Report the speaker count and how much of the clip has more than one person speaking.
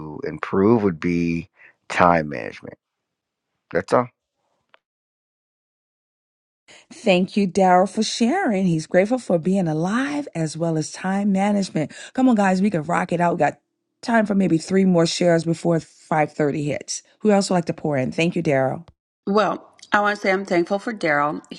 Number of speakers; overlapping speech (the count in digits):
3, no overlap